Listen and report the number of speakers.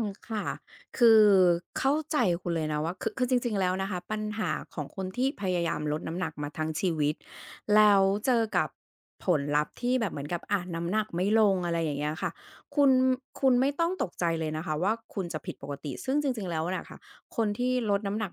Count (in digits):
1